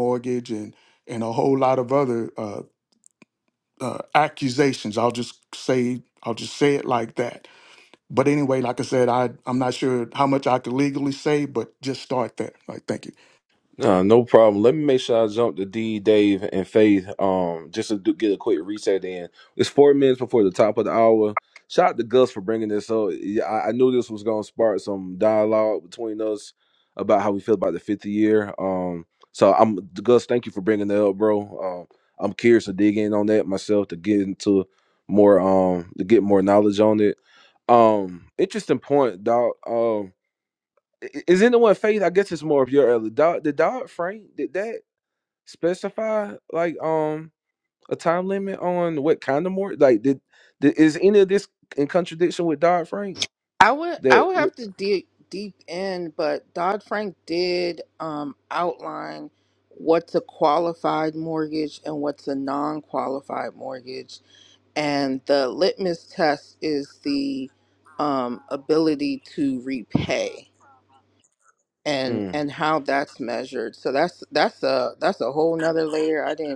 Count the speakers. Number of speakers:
3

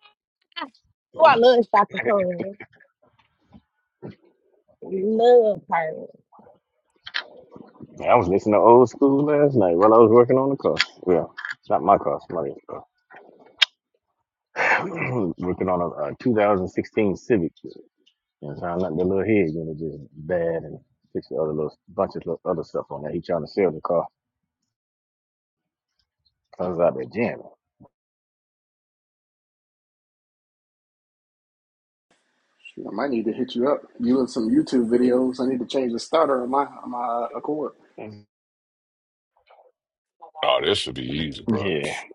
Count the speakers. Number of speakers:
4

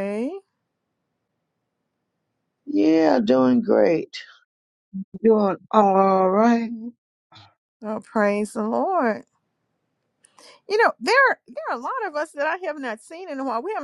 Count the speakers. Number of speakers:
3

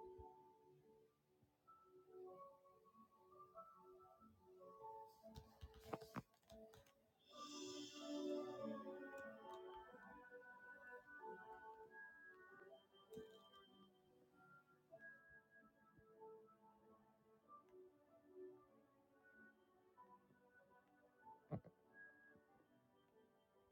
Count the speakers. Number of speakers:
0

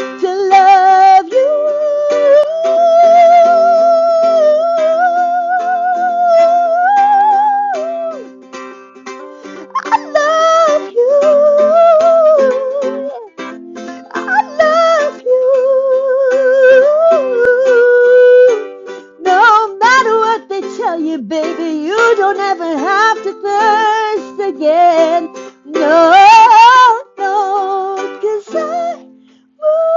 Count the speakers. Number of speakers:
1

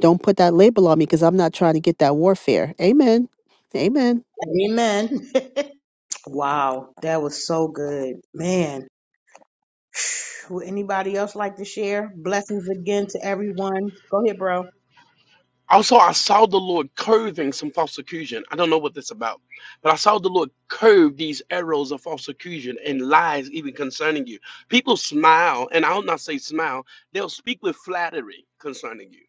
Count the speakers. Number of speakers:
3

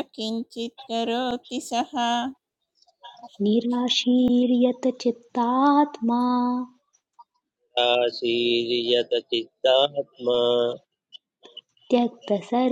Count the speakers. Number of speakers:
3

